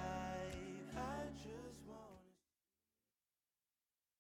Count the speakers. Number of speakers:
0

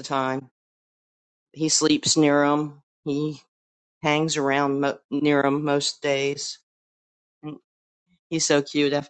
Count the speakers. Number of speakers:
1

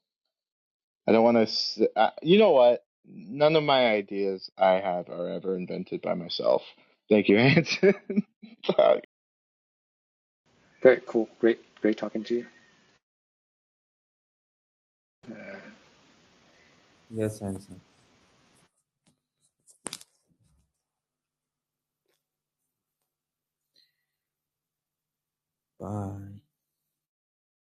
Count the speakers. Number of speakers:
3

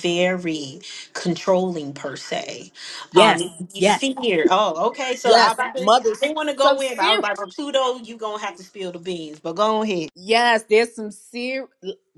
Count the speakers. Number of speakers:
2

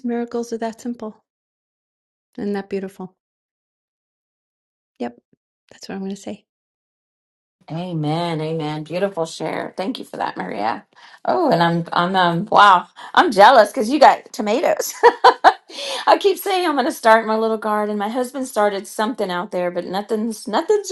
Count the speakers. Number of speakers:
2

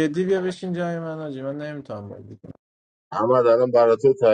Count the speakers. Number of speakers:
2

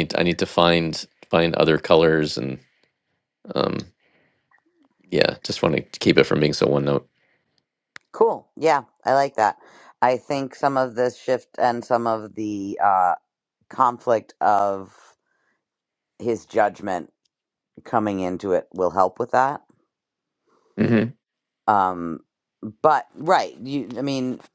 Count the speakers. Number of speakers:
2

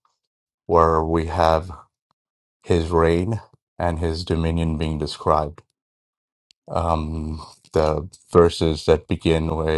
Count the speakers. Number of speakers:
1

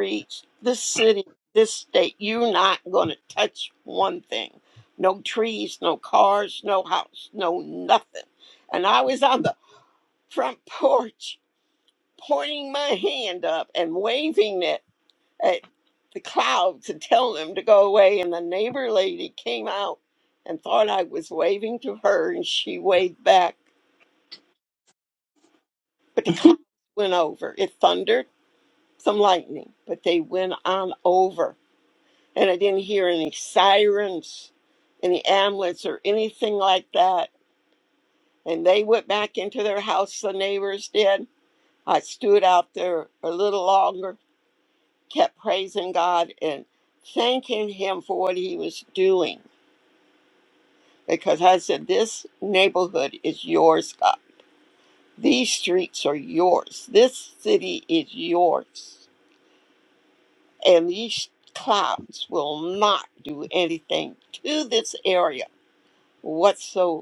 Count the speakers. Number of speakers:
1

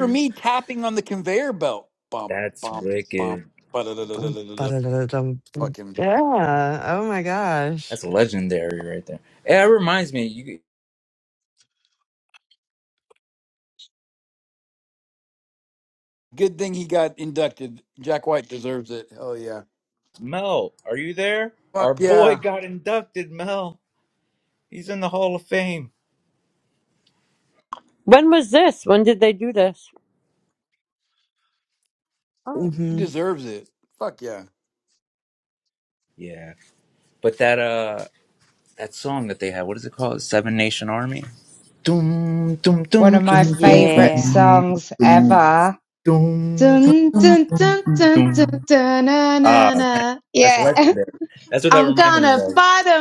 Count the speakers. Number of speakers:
5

